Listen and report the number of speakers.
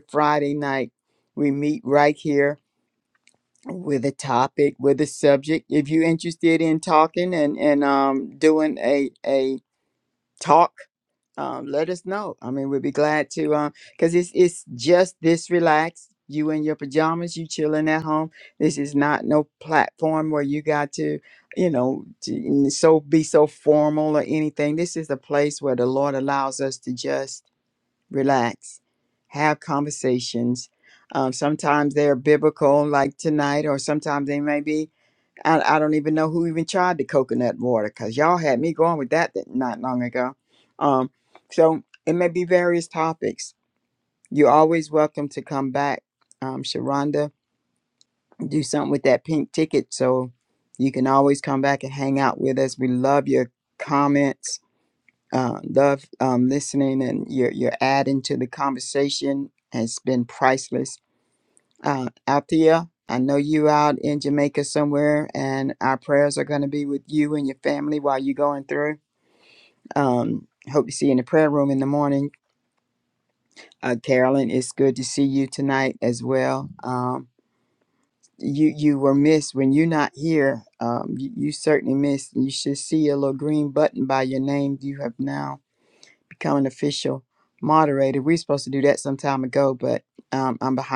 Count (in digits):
1